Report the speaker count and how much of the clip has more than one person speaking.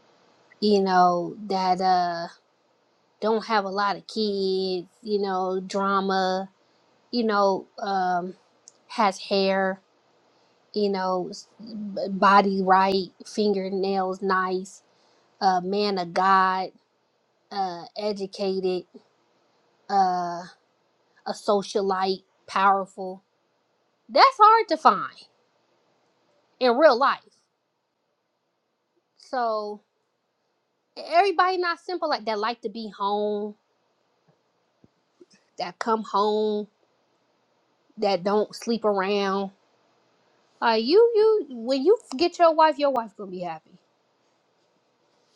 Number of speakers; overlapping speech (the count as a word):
one, no overlap